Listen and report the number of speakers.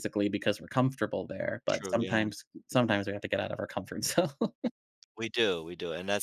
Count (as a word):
two